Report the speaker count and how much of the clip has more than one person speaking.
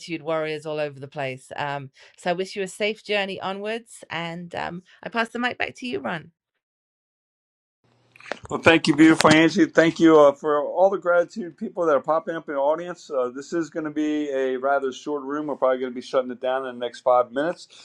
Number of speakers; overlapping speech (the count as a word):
two, no overlap